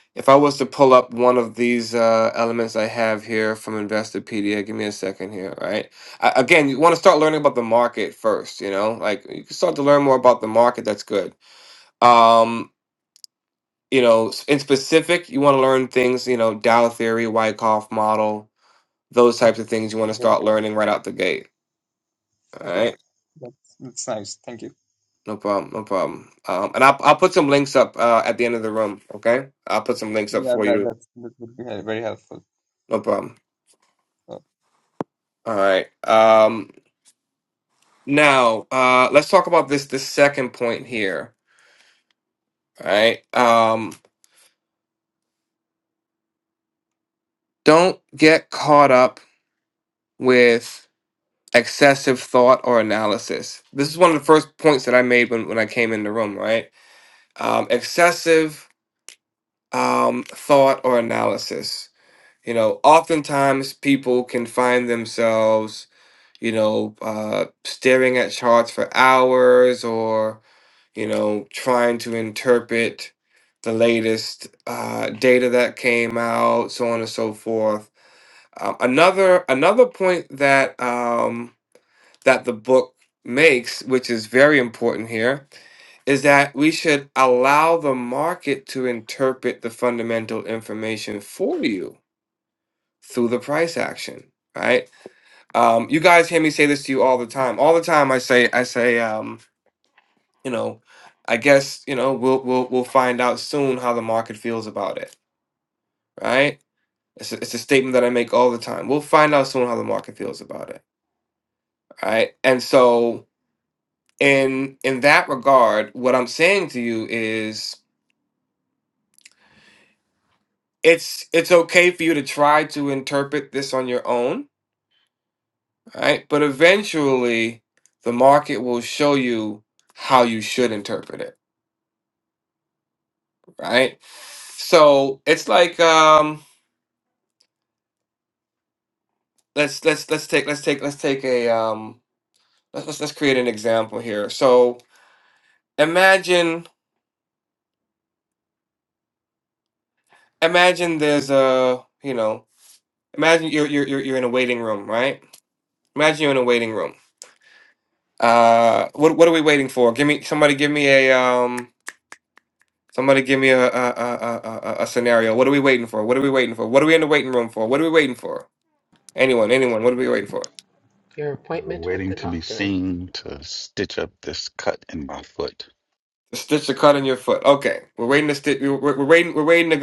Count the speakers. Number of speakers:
four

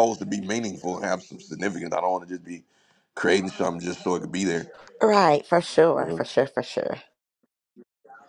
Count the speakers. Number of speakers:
two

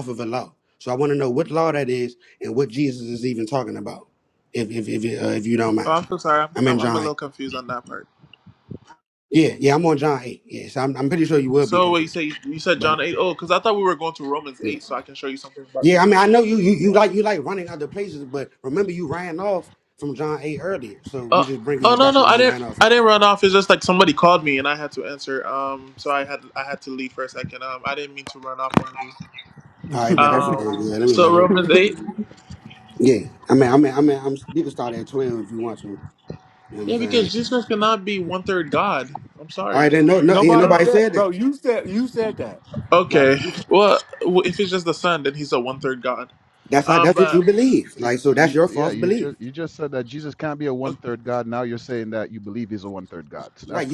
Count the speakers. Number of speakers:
four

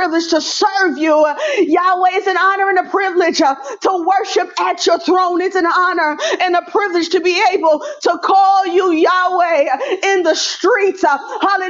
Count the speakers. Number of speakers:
one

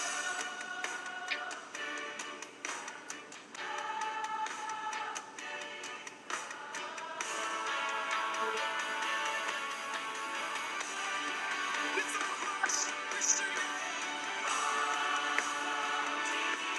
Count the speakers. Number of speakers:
zero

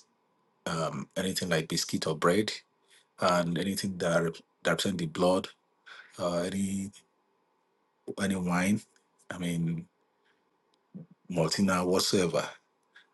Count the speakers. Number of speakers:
one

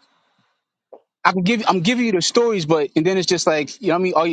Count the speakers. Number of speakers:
one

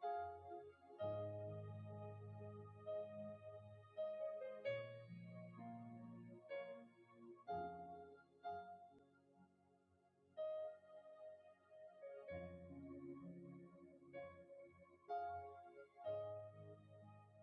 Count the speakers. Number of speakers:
zero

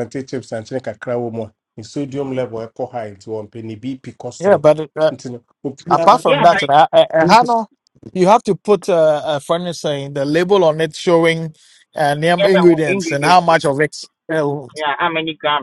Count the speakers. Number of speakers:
three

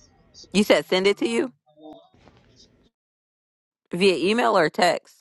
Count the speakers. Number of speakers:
one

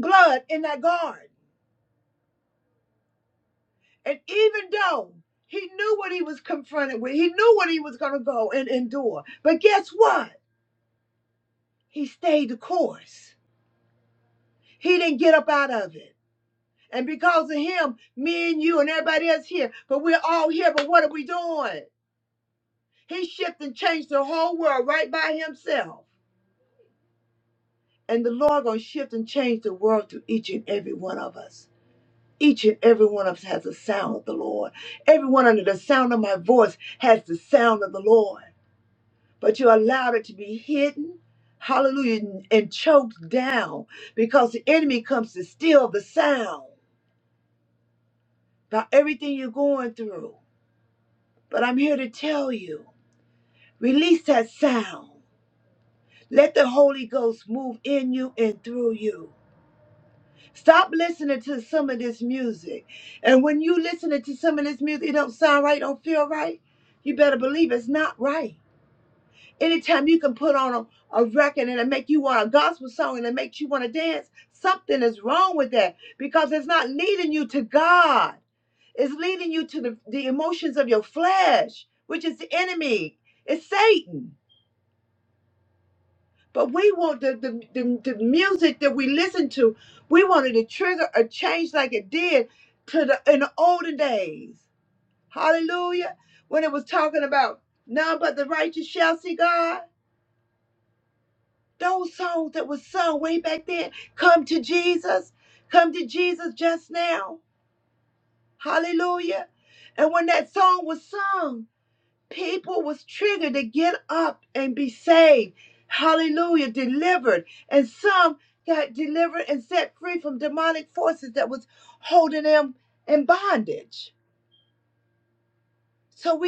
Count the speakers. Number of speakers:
one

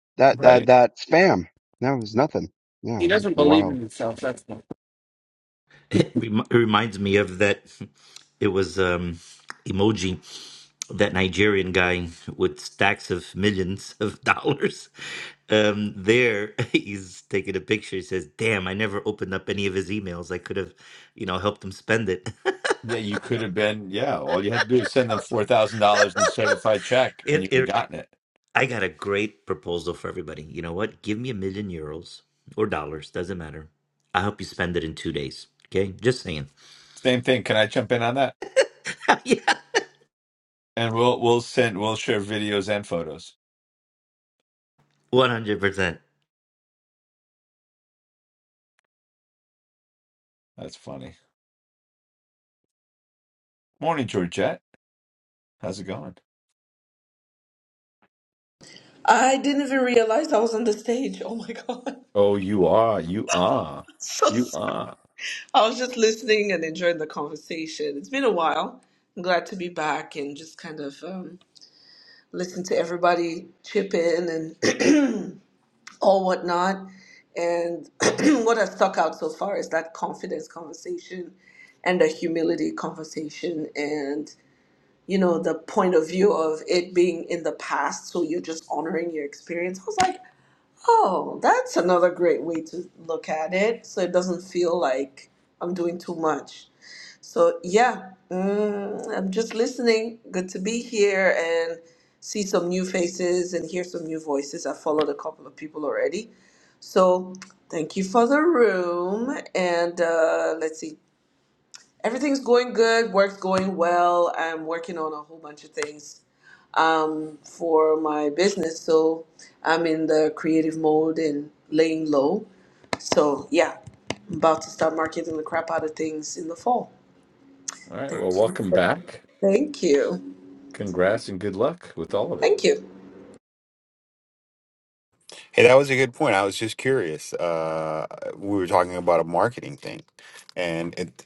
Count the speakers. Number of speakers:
six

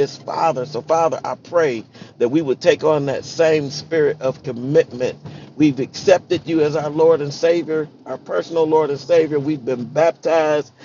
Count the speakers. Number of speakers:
one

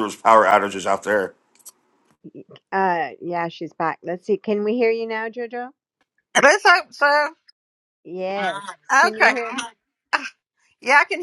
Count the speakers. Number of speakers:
three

